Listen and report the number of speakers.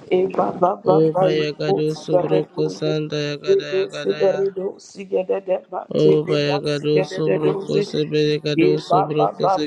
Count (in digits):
2